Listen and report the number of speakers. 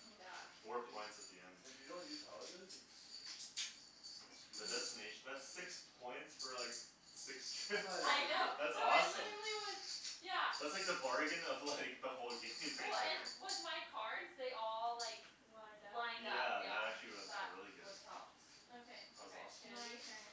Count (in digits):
4